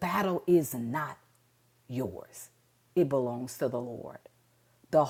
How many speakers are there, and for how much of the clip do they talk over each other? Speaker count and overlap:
1, no overlap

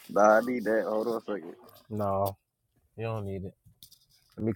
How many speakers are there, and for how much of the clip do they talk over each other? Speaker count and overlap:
2, no overlap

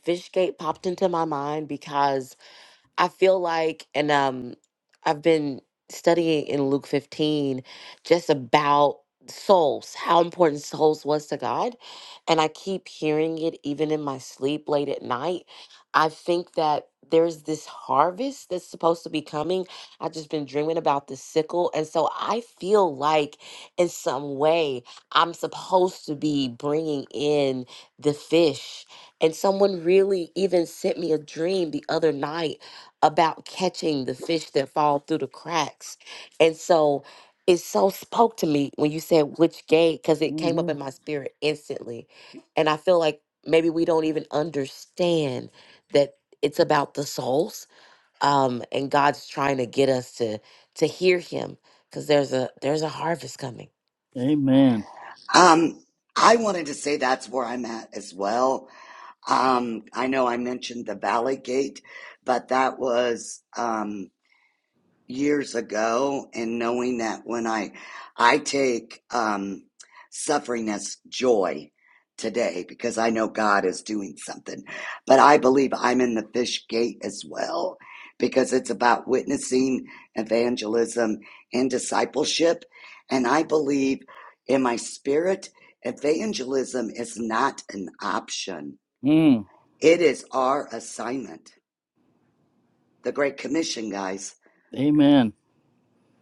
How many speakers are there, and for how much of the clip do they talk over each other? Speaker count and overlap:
3, under 1%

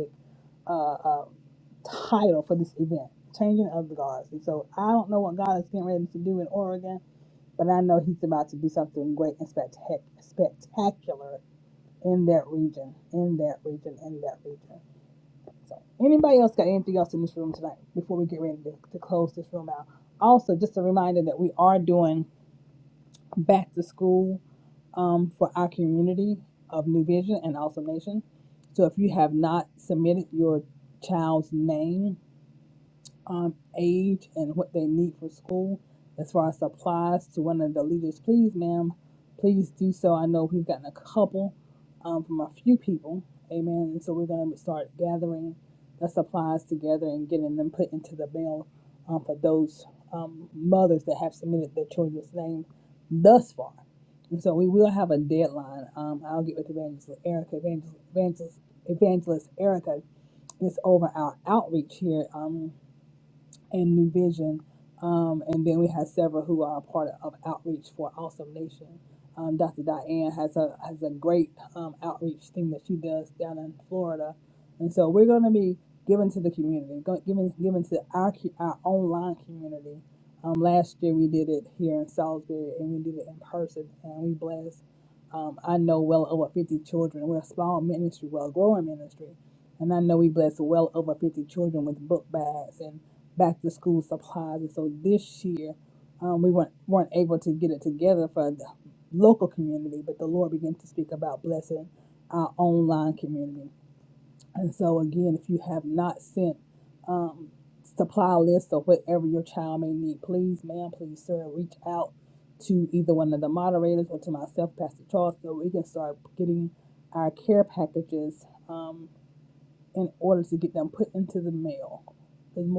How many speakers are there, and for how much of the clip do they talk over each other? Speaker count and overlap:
1, no overlap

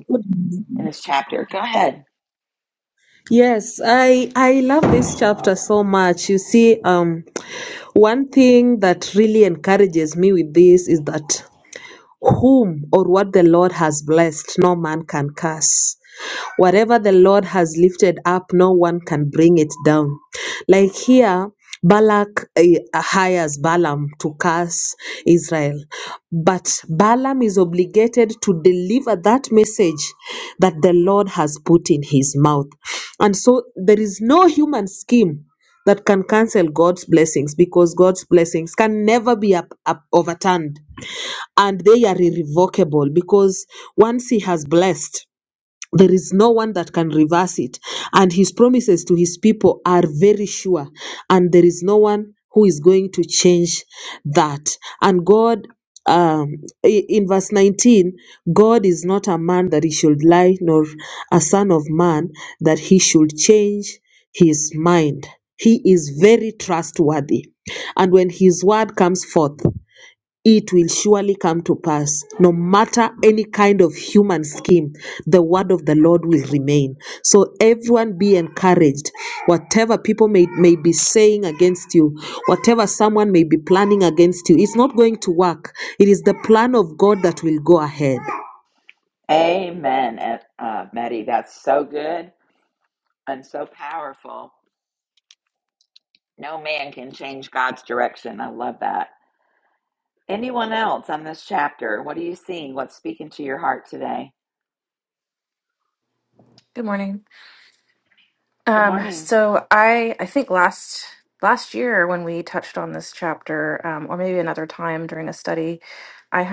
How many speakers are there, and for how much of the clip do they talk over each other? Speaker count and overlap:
3, under 1%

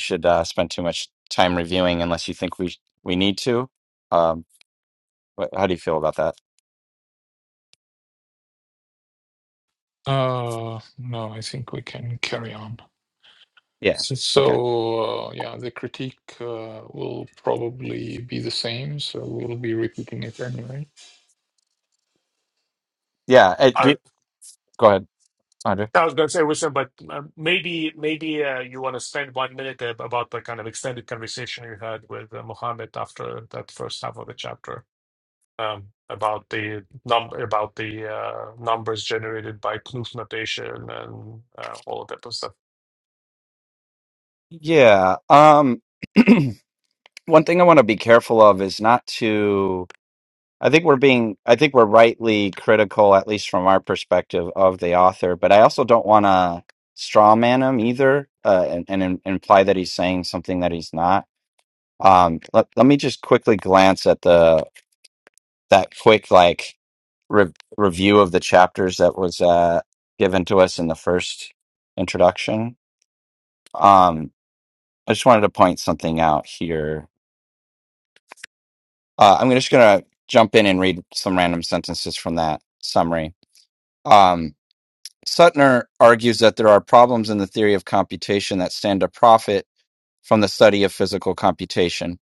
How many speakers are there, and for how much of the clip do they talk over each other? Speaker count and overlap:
3, under 1%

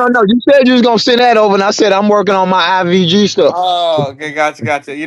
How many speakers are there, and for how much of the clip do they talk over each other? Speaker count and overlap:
2, about 1%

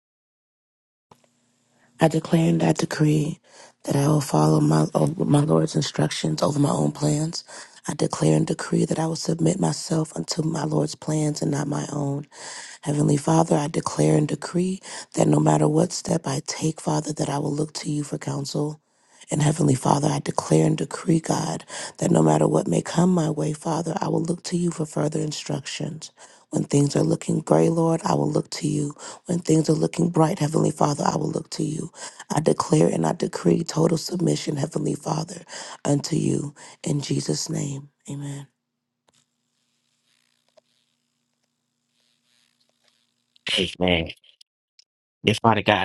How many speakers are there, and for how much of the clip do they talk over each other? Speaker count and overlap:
2, no overlap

